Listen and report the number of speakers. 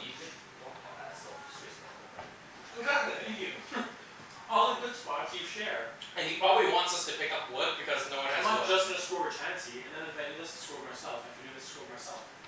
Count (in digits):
3